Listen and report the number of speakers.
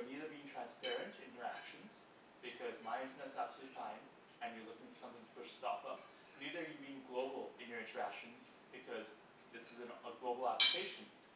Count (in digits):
1